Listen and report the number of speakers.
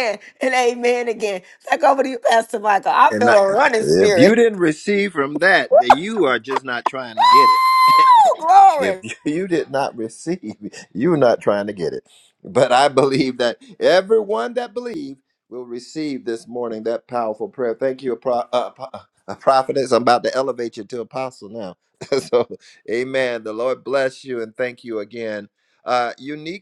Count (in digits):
2